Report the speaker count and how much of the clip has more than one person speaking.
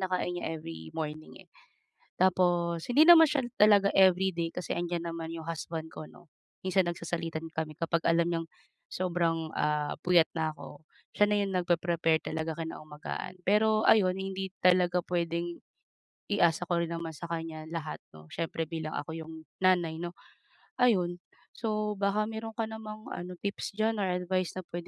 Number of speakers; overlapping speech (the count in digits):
1, no overlap